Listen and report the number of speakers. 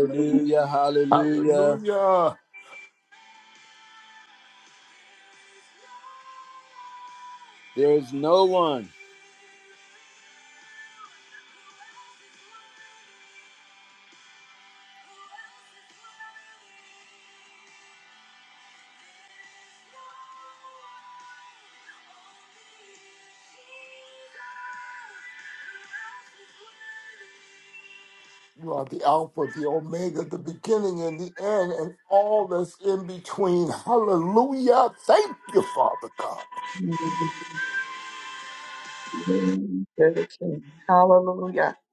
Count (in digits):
3